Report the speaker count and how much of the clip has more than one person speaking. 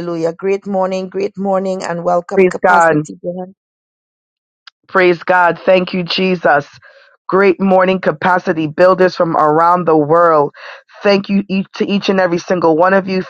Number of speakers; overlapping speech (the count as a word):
two, about 5%